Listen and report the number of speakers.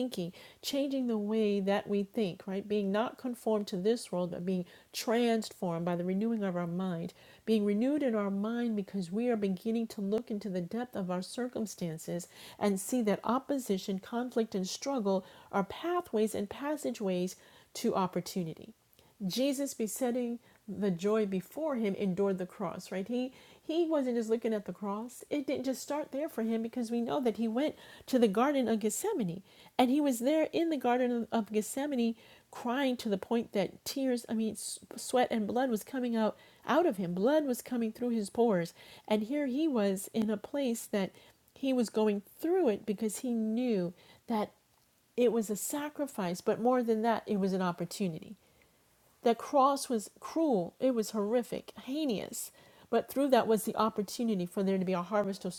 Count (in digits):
1